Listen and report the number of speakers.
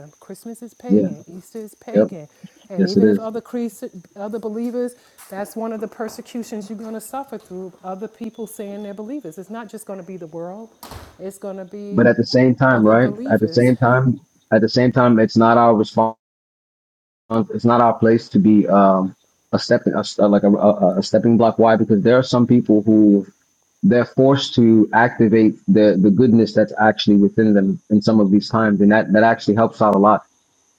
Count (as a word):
two